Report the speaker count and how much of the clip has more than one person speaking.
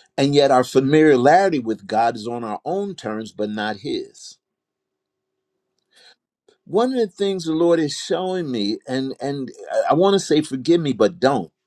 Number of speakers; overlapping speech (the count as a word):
one, no overlap